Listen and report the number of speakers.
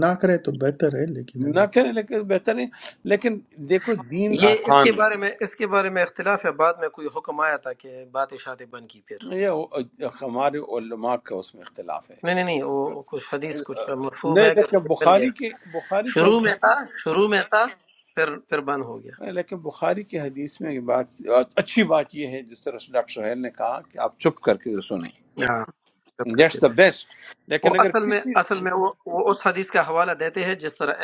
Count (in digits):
3